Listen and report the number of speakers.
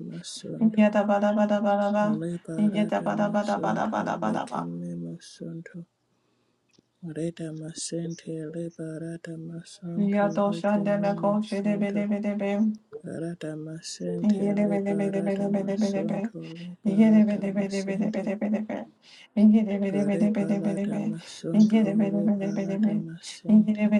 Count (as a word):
two